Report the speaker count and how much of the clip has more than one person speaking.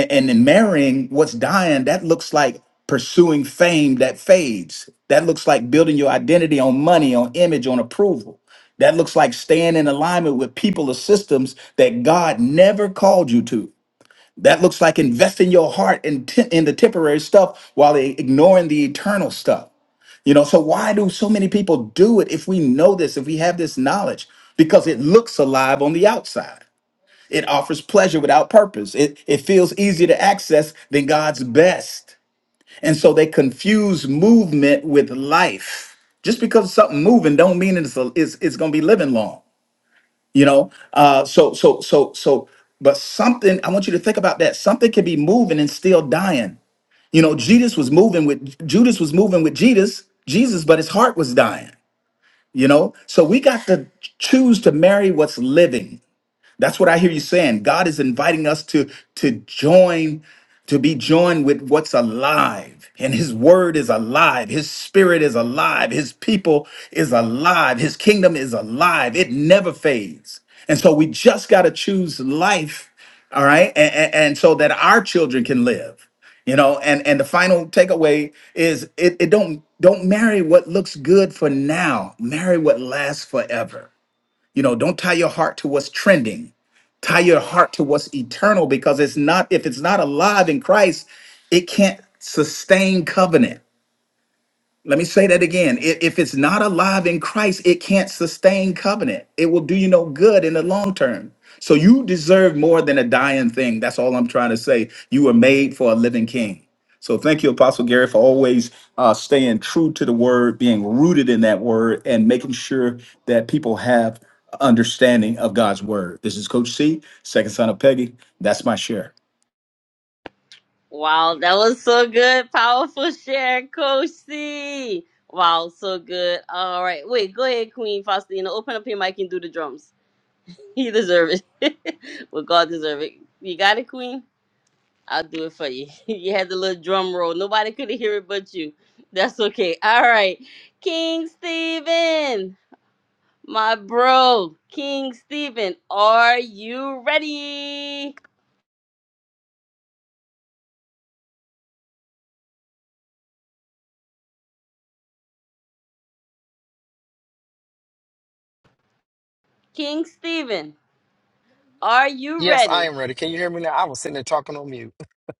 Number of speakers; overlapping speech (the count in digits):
3, under 1%